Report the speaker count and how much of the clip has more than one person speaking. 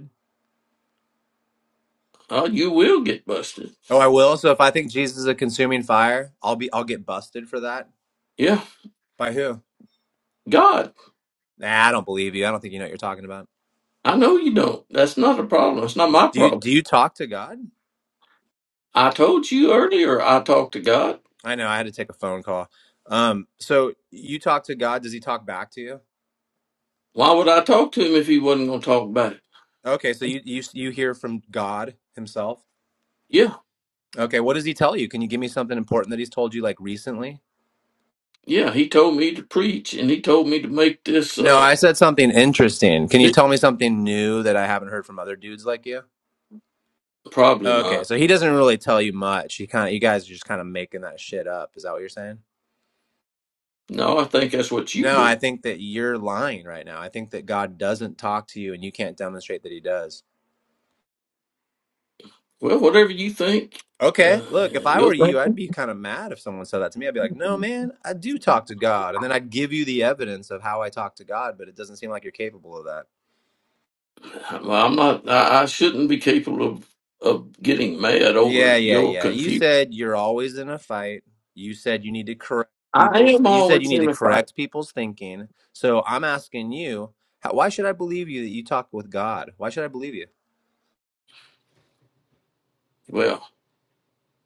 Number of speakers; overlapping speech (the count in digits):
2, about 5%